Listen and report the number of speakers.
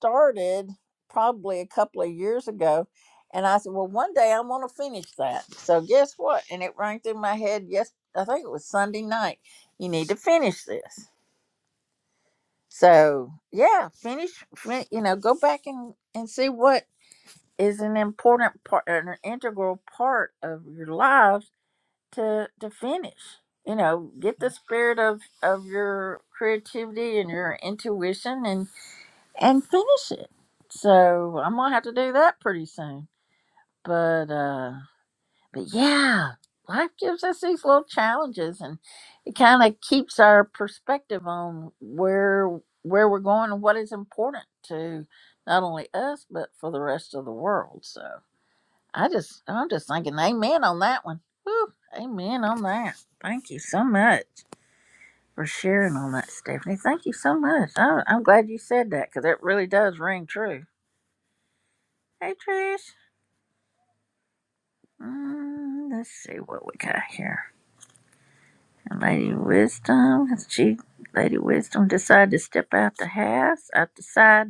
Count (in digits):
1